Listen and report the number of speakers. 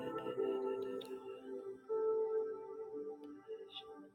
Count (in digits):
0